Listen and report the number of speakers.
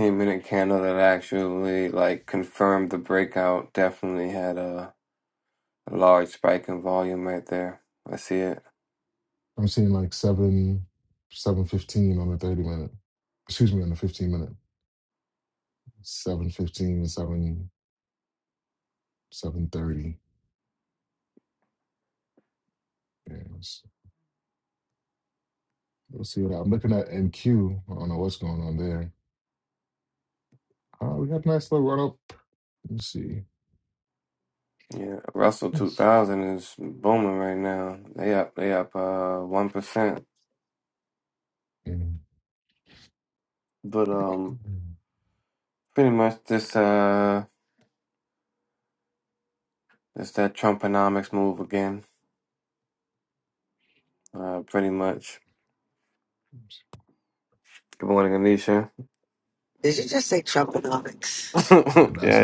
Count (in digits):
3